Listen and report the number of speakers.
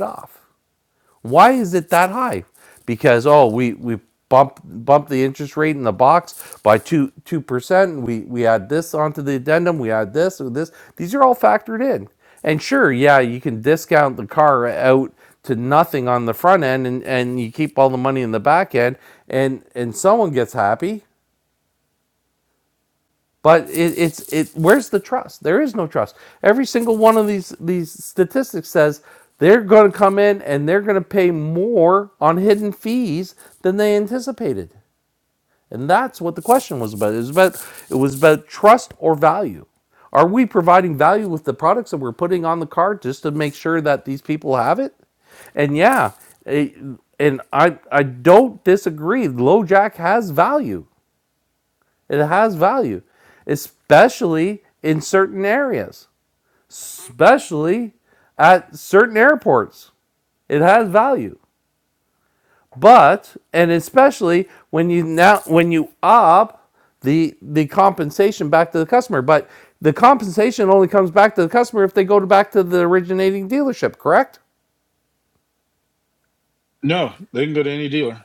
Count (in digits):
2